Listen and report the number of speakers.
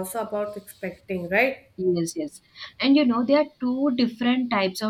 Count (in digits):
2